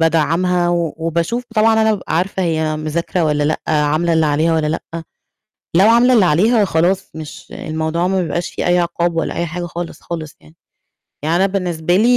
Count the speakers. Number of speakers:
1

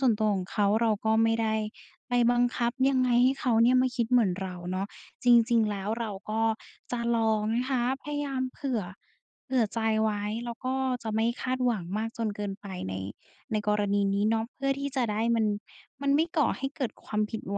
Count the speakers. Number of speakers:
1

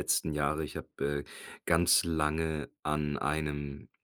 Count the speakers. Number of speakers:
1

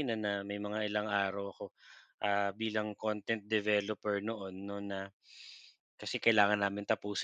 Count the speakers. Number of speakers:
1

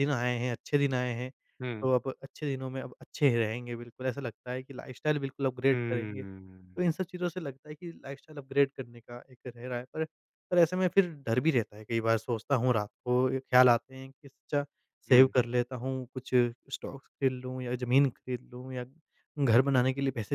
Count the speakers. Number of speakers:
2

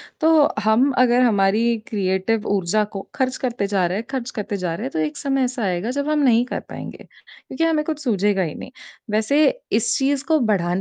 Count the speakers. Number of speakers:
1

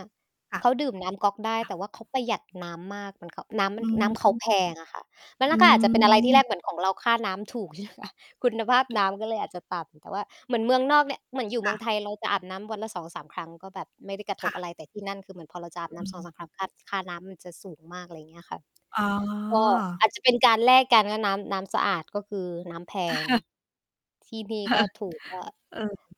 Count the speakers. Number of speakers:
2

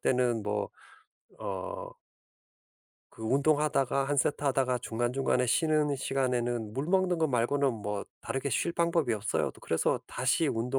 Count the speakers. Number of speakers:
1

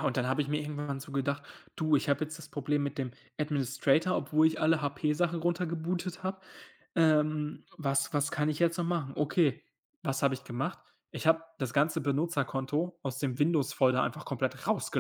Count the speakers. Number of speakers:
1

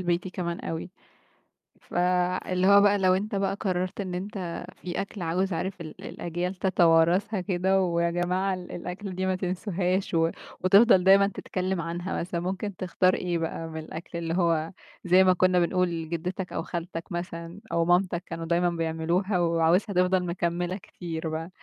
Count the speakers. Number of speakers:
1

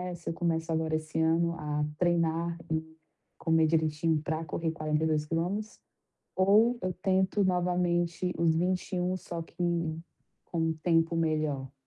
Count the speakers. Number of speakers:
1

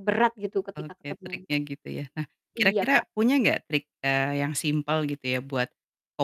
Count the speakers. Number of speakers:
2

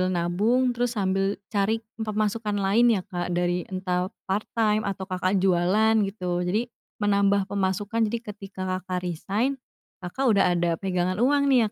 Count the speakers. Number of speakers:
1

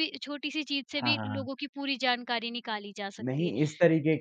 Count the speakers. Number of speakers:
2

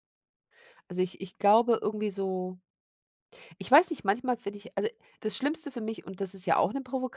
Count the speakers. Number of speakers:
1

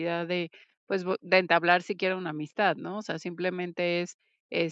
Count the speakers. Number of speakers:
1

